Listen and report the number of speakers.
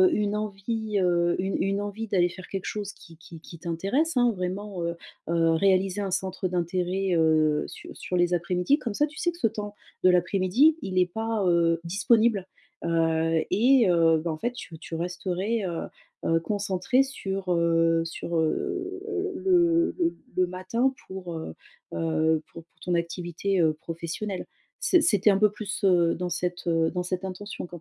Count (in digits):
1